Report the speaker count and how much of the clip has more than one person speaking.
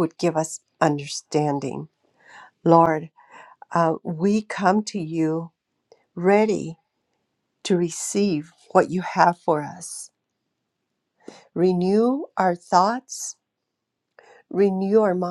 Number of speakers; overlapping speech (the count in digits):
1, no overlap